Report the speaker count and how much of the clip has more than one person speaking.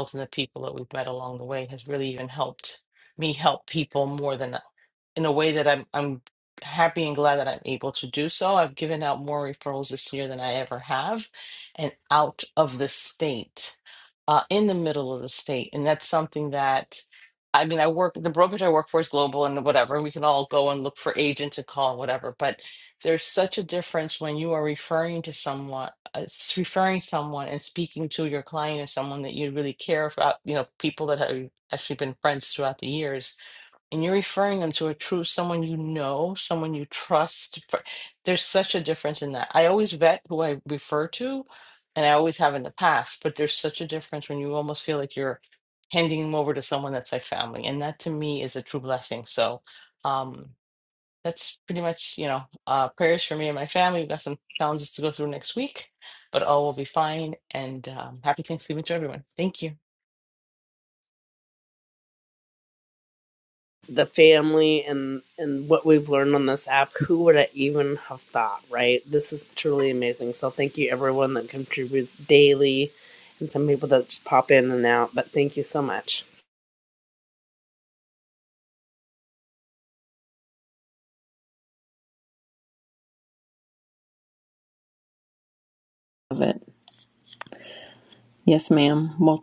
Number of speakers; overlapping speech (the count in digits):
3, no overlap